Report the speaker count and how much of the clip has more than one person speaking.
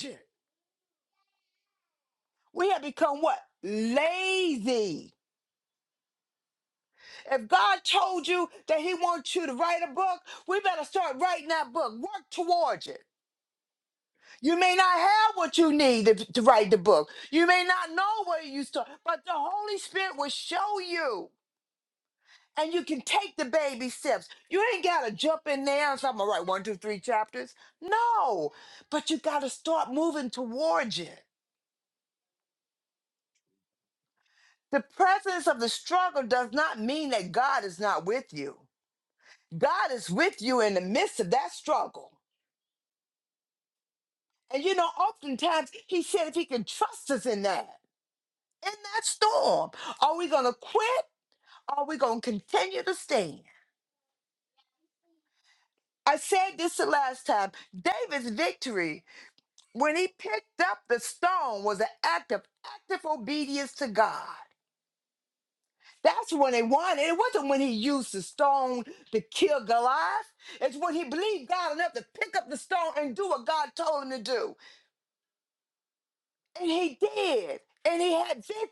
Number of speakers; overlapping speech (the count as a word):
one, no overlap